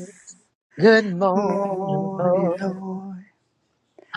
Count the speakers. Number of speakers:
two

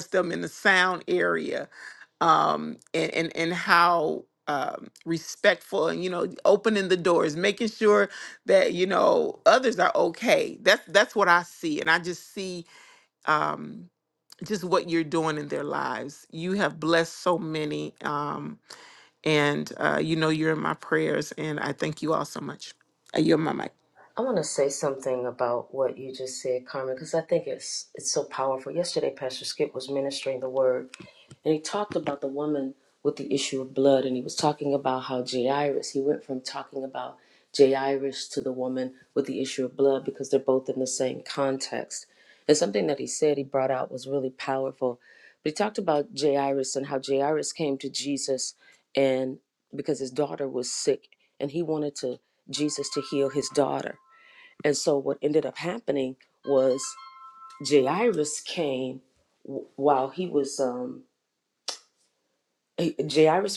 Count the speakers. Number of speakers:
two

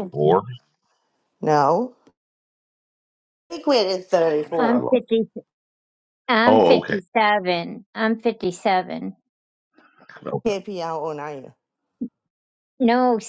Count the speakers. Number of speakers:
three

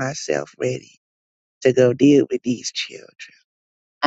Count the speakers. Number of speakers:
one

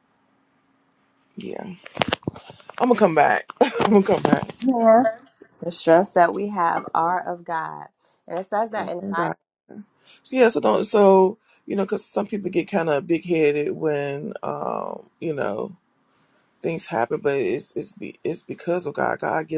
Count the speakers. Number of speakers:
two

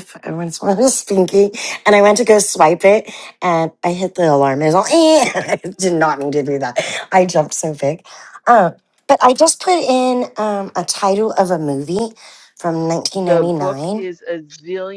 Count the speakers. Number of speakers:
two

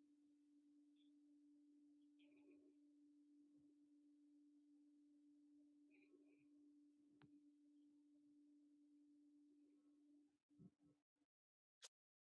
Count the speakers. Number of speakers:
zero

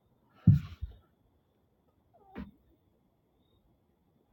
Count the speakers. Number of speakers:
zero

